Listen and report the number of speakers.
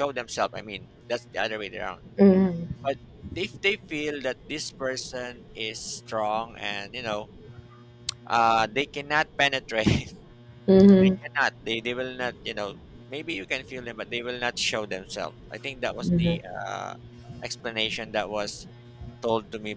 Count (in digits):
2